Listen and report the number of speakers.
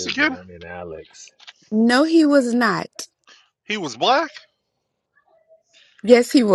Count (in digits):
3